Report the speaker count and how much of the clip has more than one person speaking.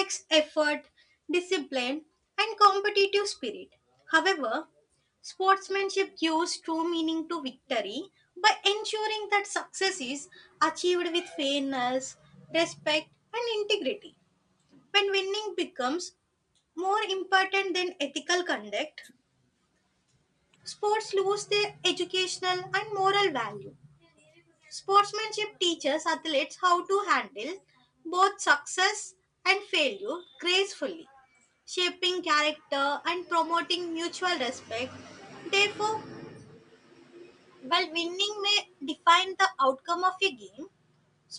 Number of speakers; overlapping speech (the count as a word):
one, no overlap